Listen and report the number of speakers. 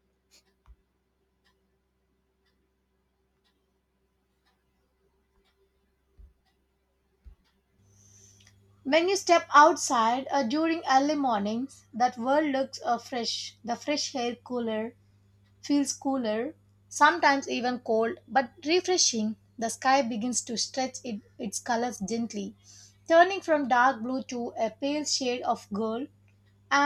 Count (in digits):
1